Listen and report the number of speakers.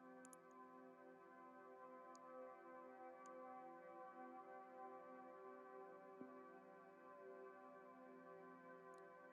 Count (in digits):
0